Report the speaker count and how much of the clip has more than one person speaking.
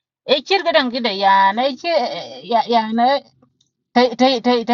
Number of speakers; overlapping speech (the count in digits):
1, no overlap